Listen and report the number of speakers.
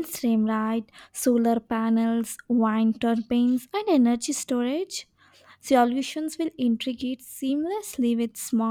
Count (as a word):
one